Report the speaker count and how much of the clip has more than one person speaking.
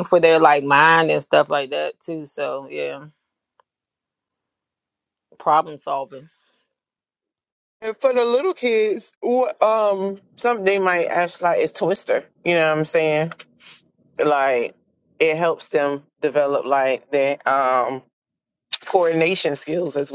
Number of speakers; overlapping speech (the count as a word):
two, no overlap